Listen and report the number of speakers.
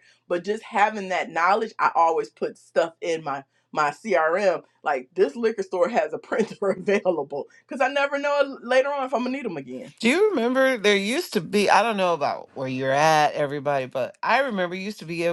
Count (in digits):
2